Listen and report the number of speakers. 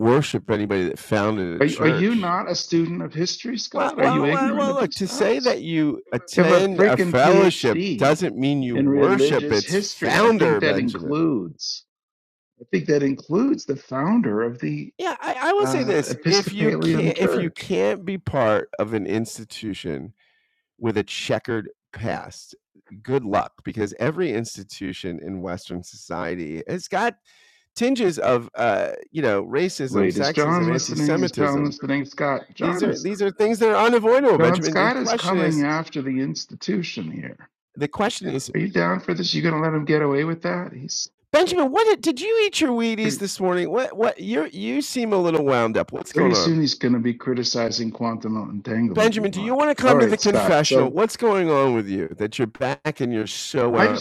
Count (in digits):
2